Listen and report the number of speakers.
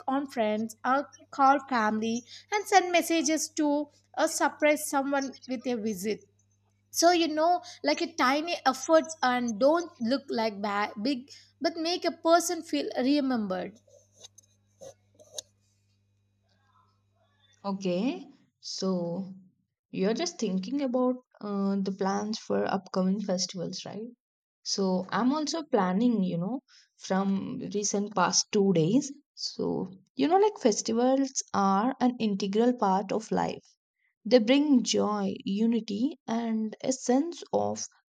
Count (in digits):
2